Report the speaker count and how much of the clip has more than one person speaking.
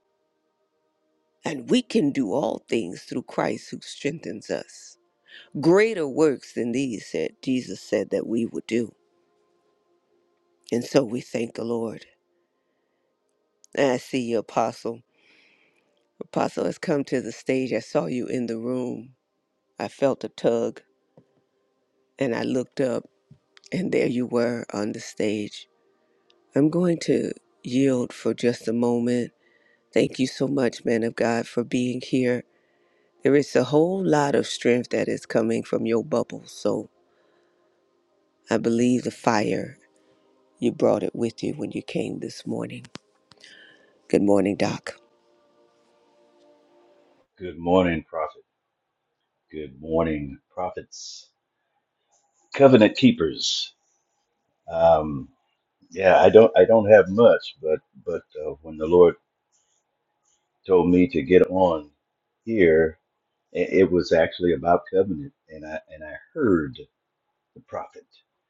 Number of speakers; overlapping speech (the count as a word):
two, no overlap